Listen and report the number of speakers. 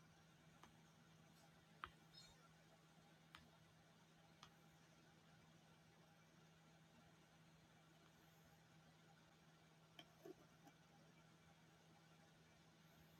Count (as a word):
zero